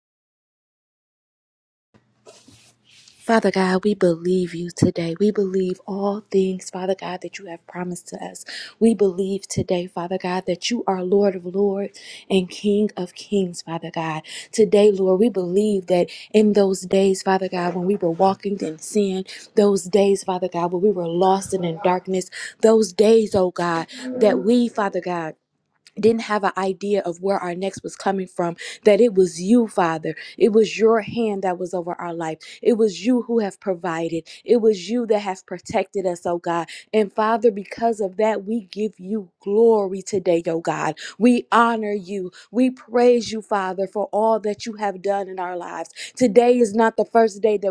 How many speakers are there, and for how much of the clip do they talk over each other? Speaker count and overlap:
1, no overlap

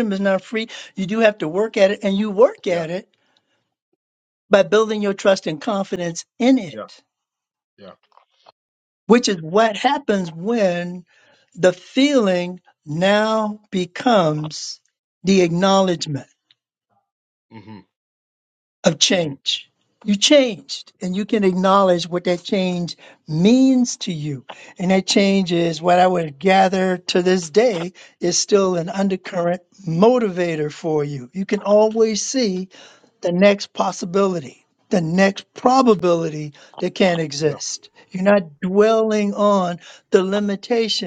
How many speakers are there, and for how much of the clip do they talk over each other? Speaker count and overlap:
2, about 1%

